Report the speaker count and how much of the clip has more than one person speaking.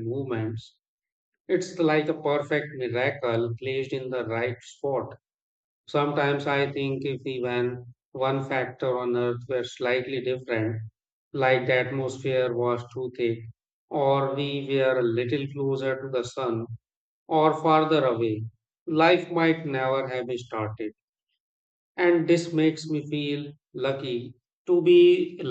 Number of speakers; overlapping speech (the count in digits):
1, no overlap